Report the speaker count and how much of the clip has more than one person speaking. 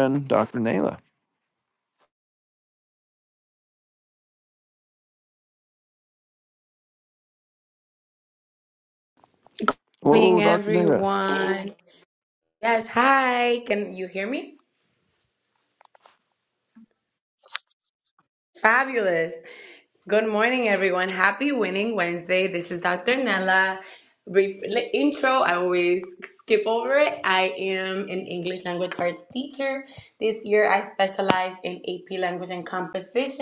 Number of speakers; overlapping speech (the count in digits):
2, about 3%